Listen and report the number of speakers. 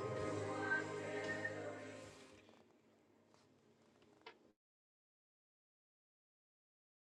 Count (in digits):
0